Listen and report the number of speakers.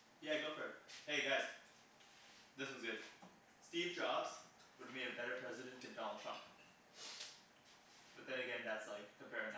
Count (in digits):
1